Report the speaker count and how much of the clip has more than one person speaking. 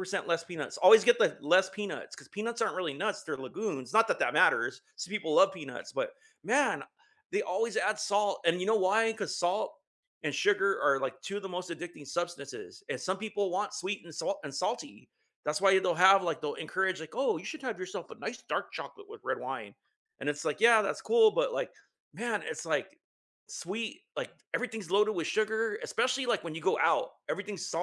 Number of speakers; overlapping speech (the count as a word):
one, no overlap